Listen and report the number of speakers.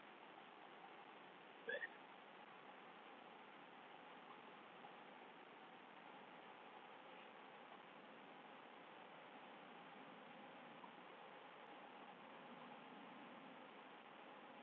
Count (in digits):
0